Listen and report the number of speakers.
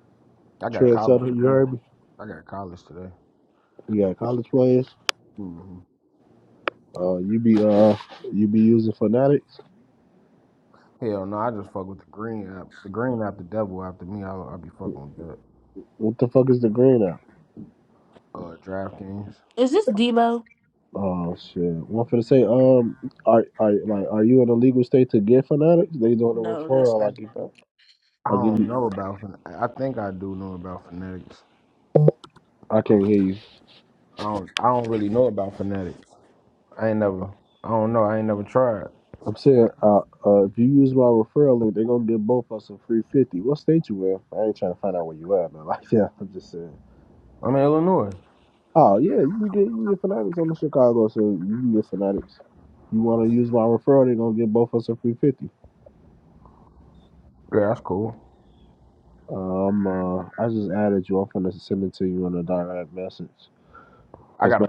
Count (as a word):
three